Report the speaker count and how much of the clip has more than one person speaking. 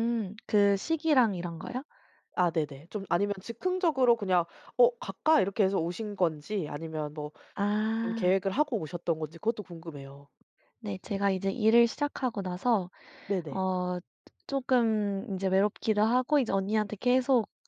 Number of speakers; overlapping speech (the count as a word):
two, about 2%